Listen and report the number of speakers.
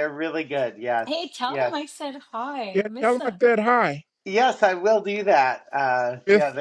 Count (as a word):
three